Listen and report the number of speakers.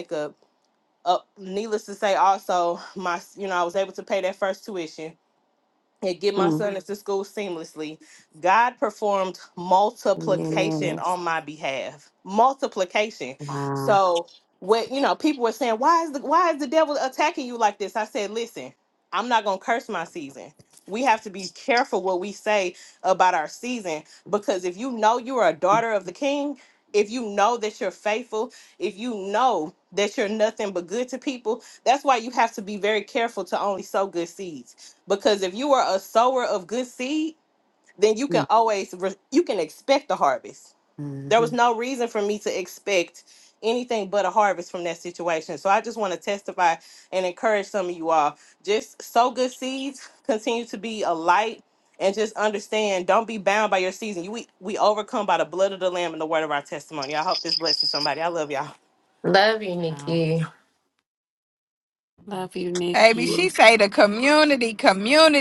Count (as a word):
four